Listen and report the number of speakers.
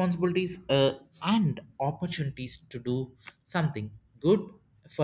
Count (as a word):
one